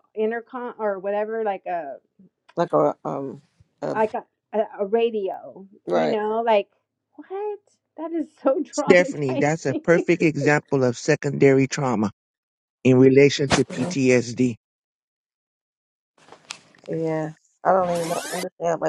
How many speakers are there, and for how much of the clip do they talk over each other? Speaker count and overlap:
three, about 5%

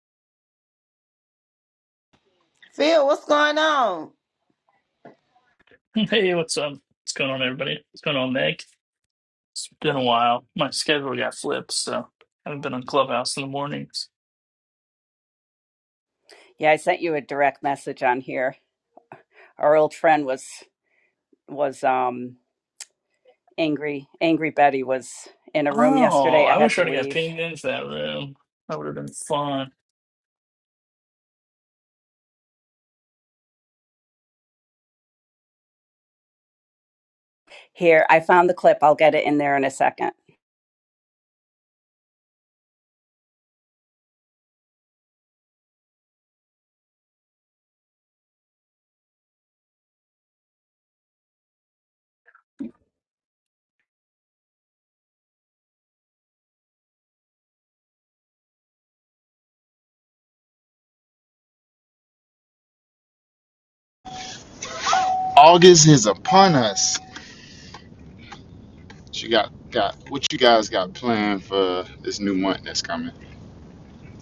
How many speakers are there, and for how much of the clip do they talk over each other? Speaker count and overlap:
four, about 2%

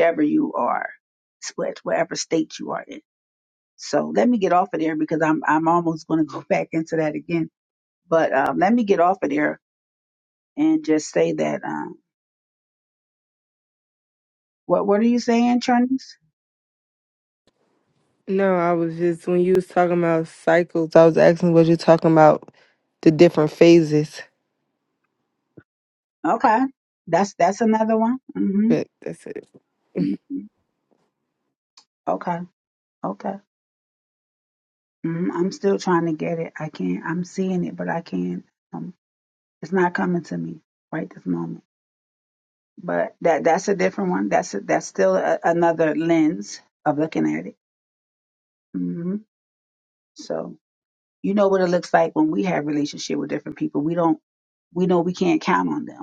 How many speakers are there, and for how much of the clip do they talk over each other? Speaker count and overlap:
two, under 1%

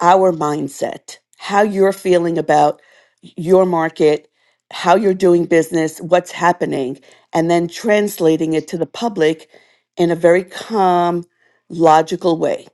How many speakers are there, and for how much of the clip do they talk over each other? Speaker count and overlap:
one, no overlap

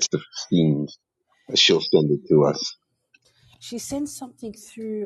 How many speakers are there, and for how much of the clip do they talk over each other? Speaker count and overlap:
two, no overlap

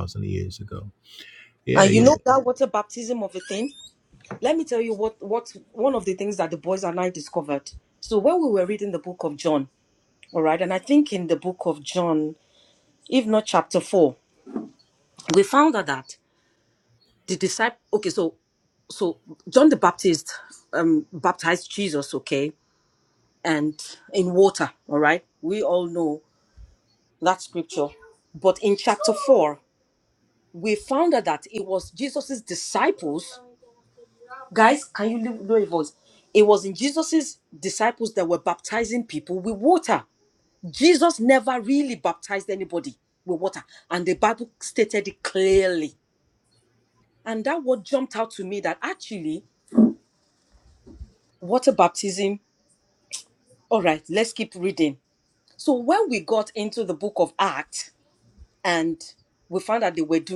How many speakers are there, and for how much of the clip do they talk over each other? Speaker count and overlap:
two, about 1%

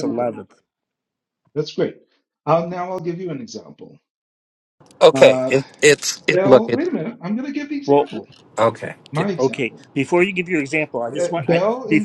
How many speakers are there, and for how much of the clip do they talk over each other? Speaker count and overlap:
three, about 25%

